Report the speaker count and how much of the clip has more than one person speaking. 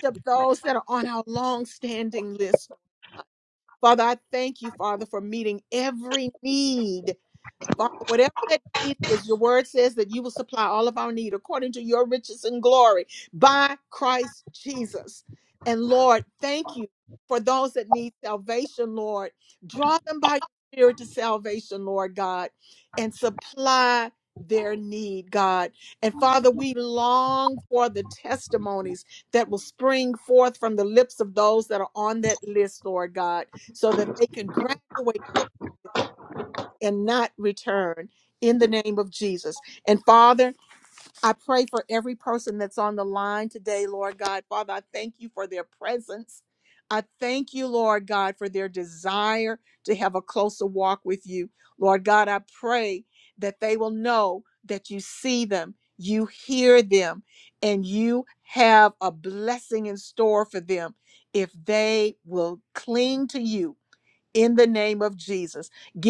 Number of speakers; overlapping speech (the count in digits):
1, no overlap